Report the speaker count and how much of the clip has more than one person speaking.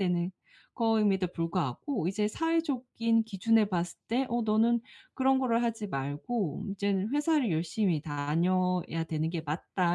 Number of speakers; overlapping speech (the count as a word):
one, no overlap